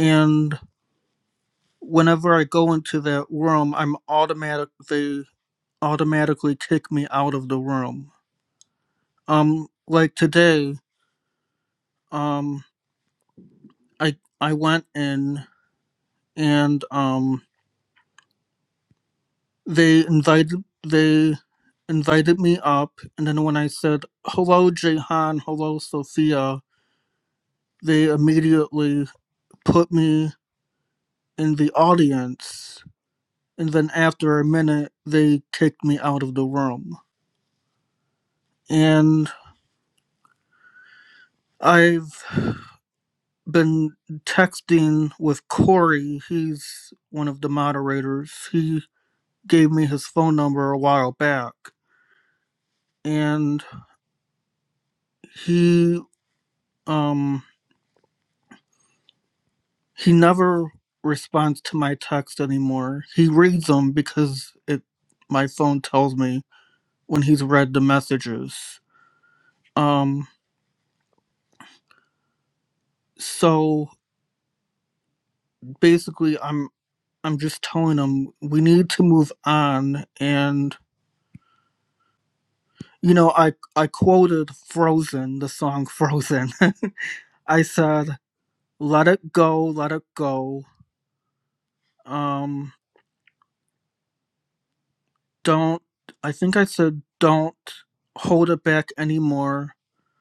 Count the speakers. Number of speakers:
1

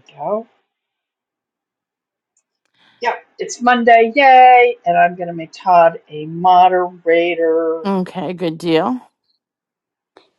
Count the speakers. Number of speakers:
2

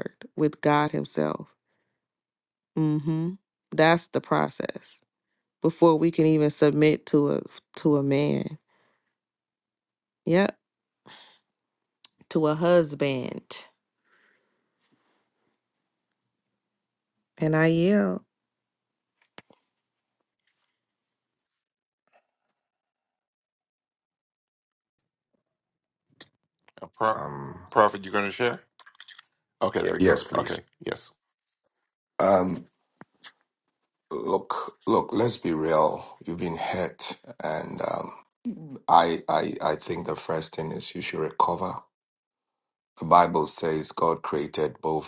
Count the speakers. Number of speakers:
3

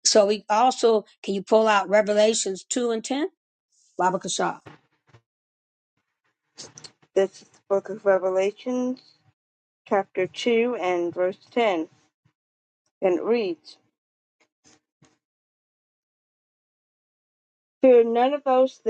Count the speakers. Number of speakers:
2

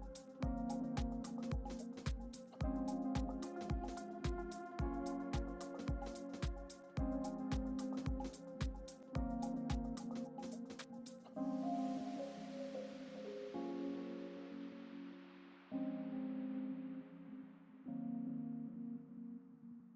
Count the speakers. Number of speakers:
0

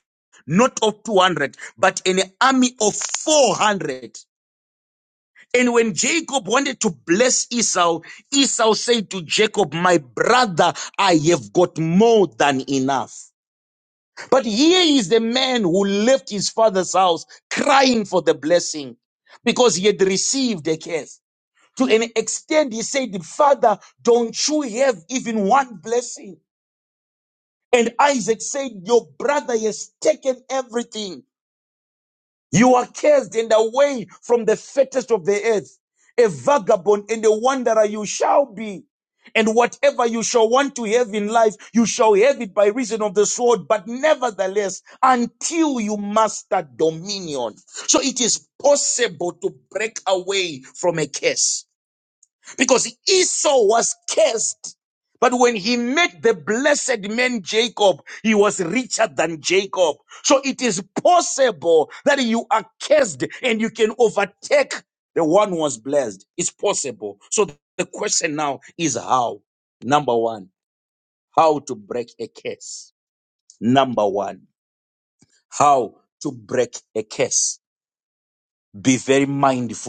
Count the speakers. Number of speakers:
1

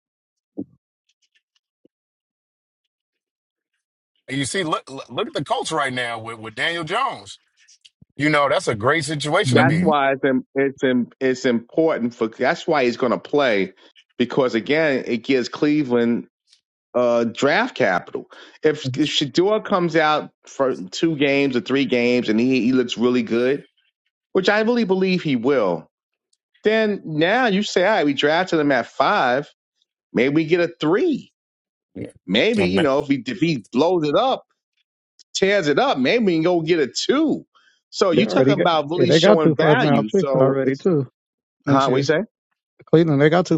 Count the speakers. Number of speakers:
3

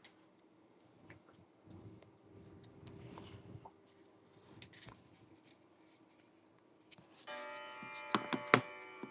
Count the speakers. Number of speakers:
0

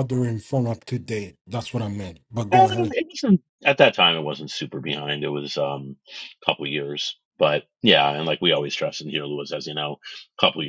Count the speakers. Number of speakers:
2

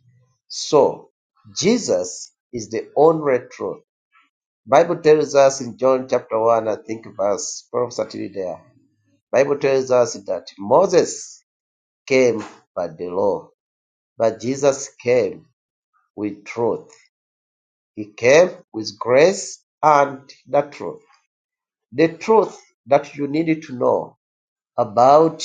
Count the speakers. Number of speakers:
1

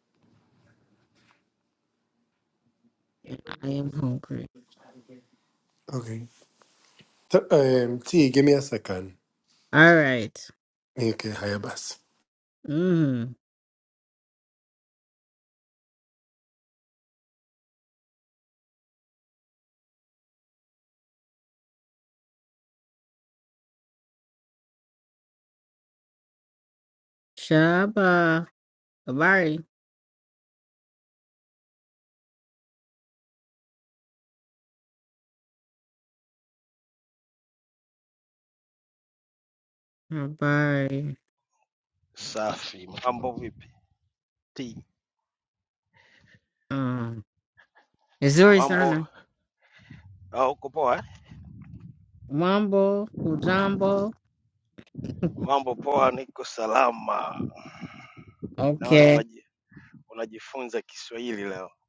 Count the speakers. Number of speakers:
3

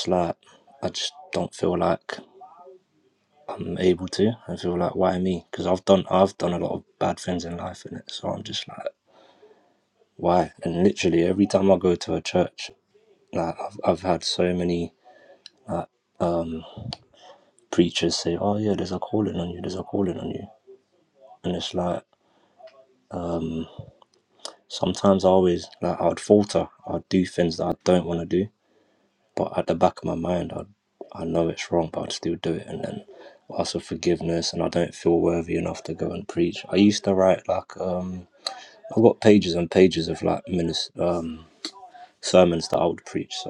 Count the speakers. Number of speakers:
1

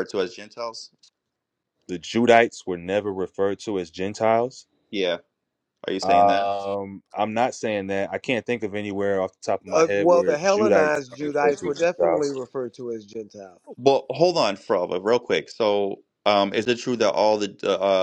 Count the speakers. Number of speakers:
3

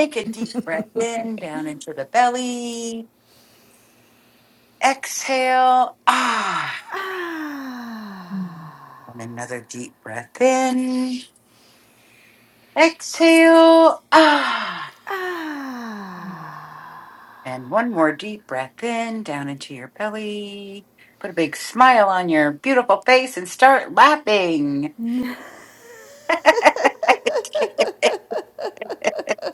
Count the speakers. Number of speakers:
2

